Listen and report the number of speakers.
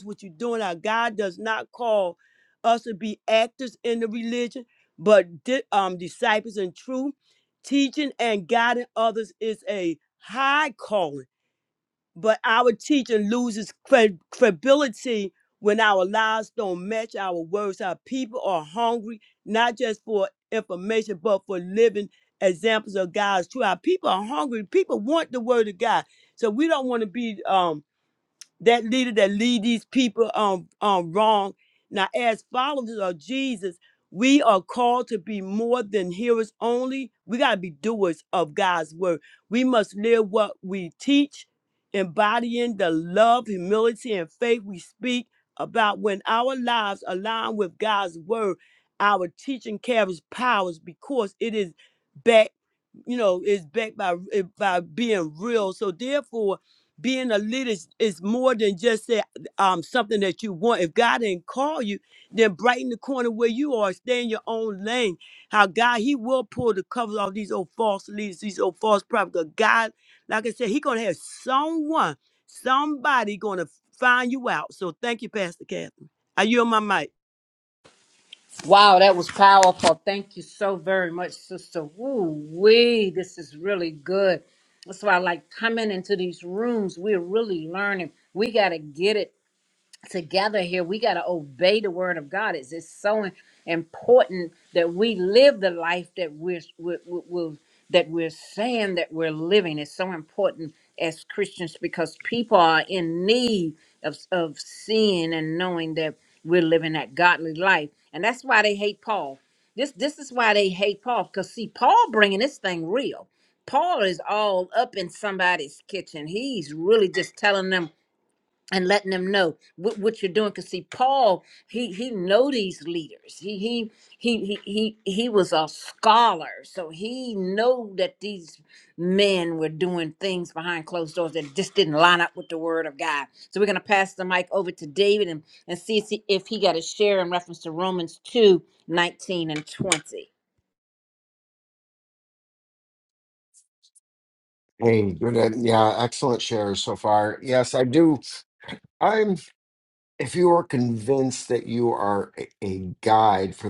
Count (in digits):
3